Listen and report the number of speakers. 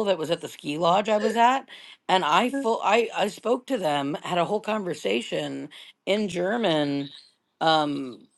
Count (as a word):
one